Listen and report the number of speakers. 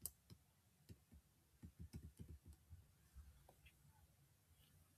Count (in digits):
0